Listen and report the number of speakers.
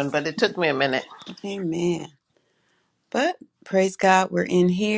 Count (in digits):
2